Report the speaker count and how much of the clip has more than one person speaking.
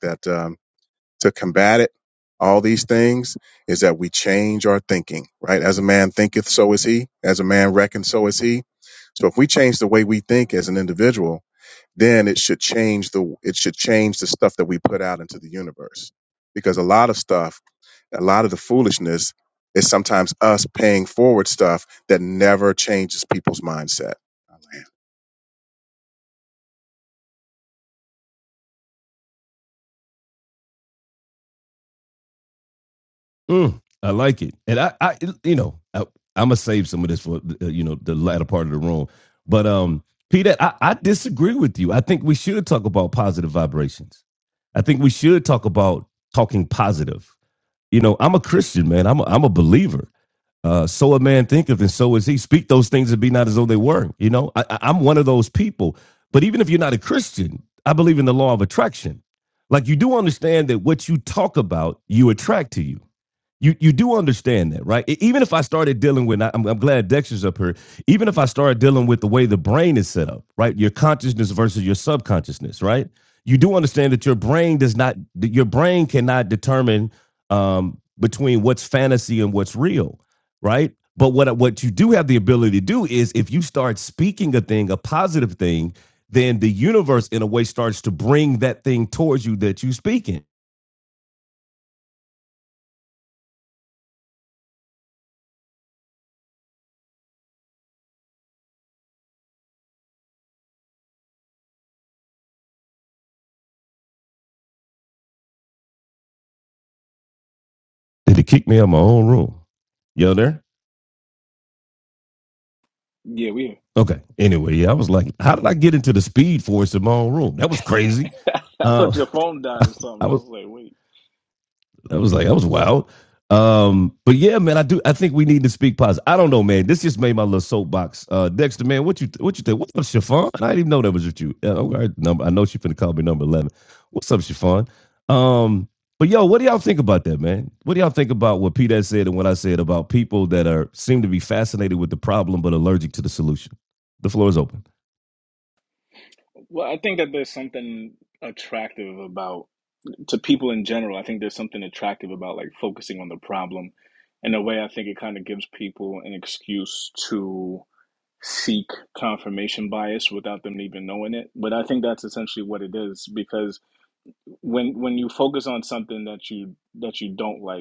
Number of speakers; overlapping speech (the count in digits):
3, under 1%